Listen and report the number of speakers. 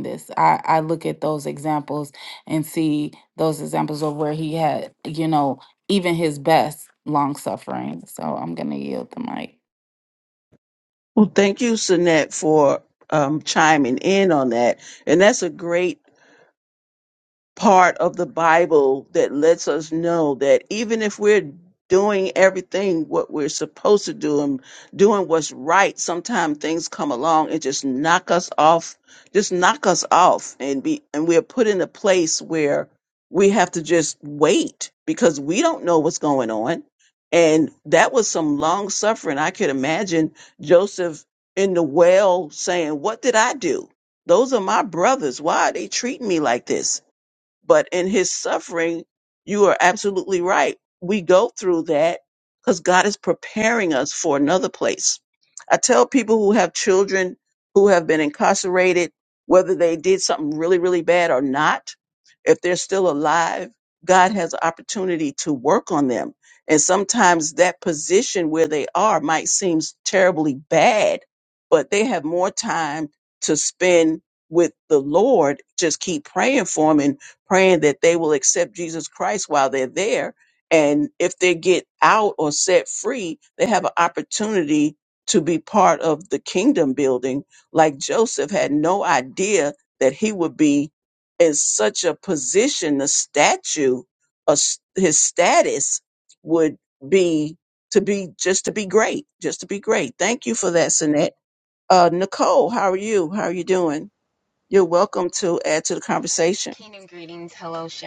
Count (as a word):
three